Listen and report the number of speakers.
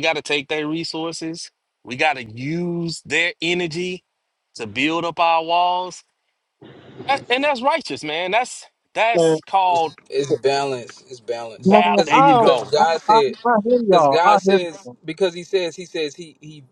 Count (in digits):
3